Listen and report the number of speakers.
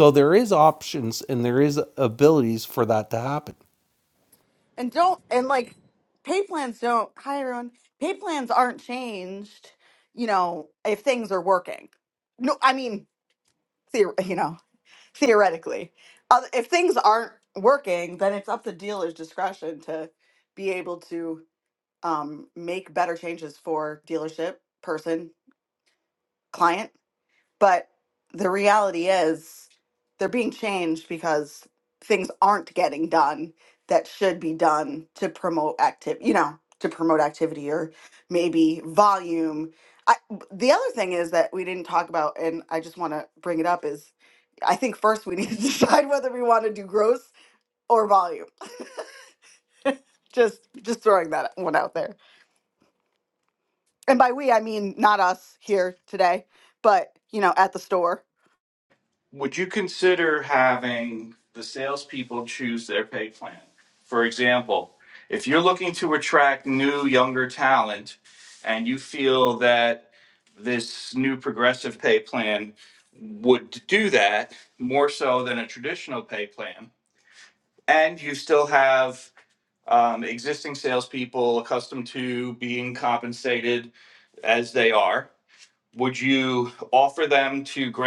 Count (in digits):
3